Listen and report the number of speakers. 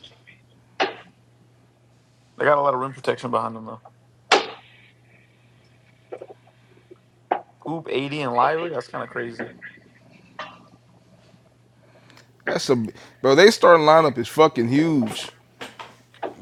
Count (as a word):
two